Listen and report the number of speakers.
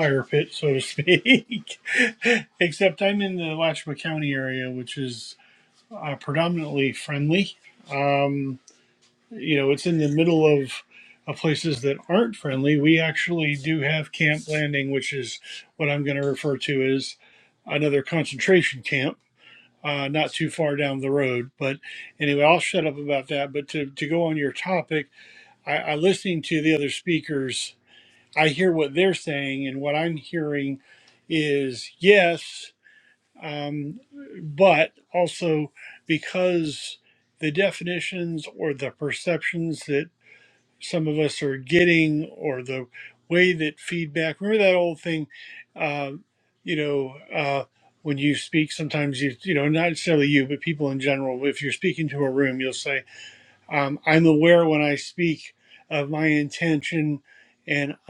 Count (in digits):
1